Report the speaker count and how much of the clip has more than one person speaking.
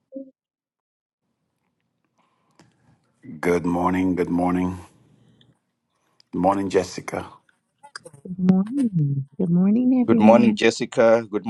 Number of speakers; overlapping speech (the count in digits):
3, about 5%